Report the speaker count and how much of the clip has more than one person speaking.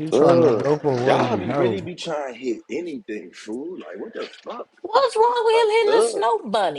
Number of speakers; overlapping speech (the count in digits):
3, about 37%